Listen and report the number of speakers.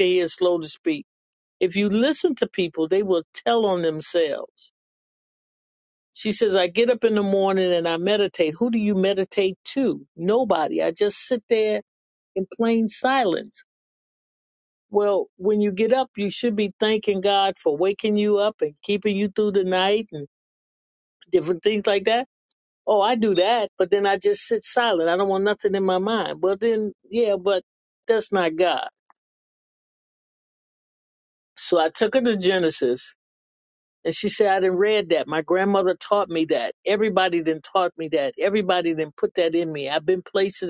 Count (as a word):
one